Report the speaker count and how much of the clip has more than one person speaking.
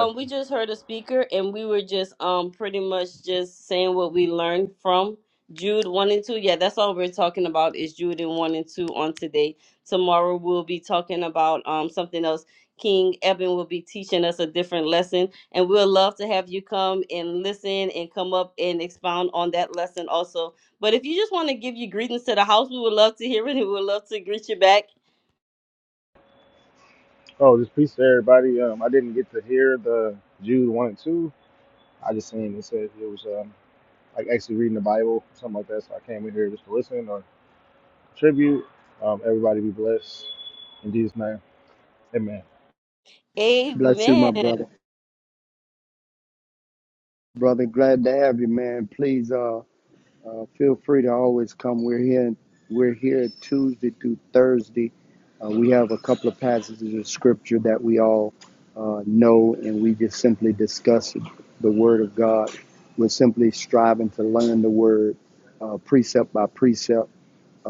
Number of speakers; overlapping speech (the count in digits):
3, about 1%